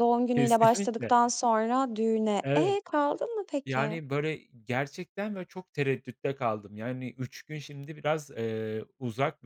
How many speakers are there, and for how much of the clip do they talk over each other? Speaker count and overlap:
2, about 15%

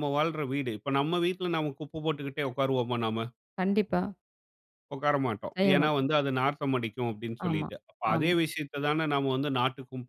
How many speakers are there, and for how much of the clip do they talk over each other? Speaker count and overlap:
2, about 9%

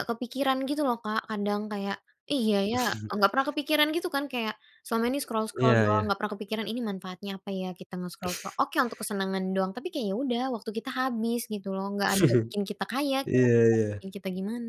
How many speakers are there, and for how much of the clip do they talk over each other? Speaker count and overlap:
2, about 4%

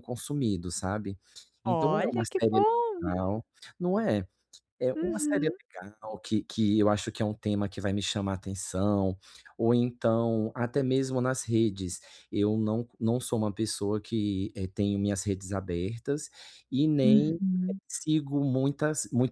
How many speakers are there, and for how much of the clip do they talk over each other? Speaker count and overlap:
2, about 11%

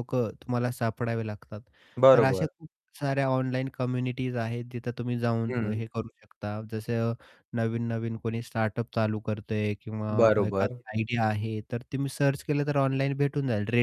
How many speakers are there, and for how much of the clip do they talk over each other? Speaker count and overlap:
2, about 10%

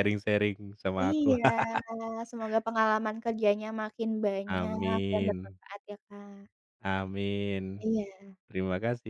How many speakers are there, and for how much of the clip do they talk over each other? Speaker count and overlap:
2, about 15%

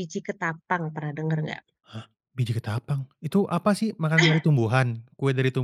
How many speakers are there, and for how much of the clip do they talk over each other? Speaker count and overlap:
2, no overlap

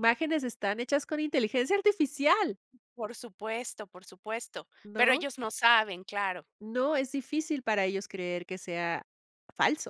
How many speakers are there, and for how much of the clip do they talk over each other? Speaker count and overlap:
2, about 3%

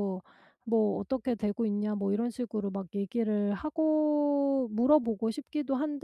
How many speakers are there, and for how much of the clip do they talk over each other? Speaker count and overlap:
1, no overlap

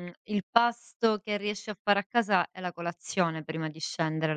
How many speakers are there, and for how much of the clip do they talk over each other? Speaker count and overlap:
1, no overlap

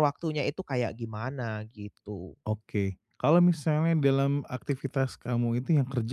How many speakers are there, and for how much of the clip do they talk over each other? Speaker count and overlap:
2, no overlap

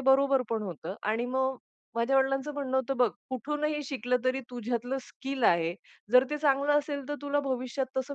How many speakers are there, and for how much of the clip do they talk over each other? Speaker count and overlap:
1, no overlap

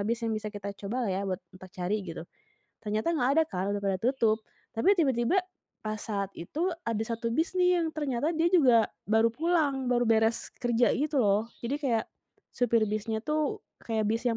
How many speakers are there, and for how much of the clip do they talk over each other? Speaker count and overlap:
1, no overlap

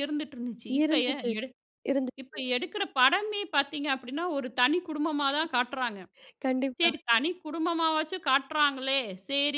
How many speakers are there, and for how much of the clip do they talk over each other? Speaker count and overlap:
2, about 10%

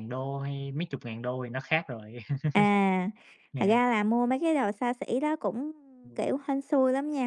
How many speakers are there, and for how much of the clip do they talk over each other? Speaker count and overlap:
2, about 3%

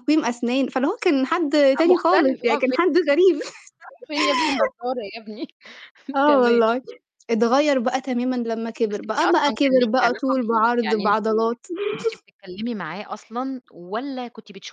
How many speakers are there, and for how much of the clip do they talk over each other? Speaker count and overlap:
2, about 27%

